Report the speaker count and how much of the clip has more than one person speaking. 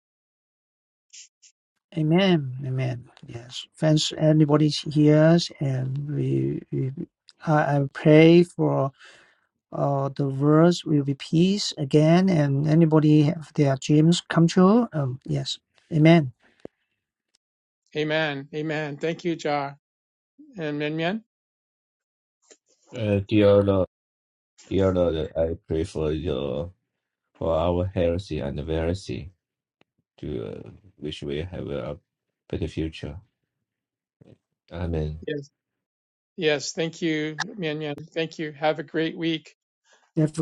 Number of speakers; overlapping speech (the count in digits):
3, no overlap